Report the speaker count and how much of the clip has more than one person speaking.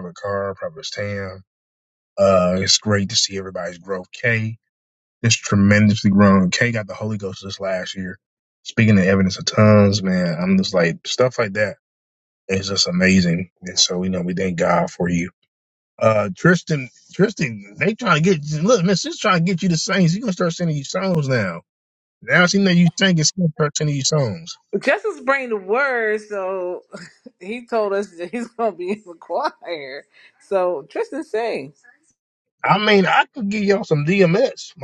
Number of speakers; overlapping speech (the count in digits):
2, no overlap